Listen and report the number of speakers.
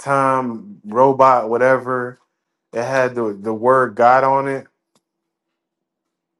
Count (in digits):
1